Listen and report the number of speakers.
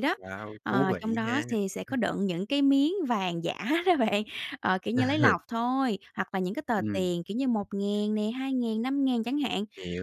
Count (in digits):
2